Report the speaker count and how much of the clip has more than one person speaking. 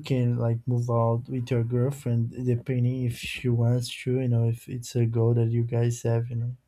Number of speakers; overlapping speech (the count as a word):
one, no overlap